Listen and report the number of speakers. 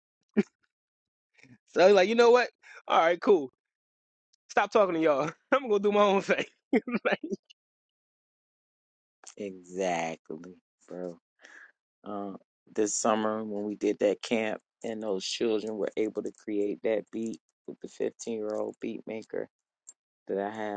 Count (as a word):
two